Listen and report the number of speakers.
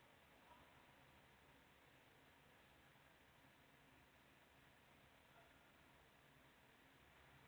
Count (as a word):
zero